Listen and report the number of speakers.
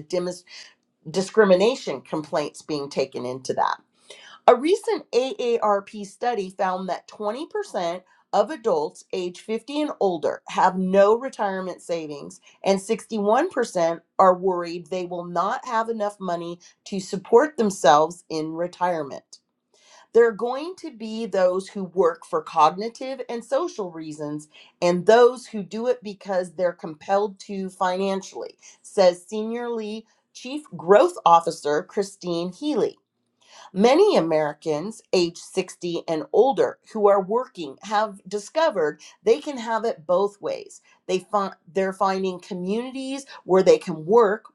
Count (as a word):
one